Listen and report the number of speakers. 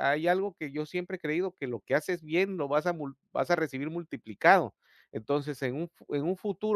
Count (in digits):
1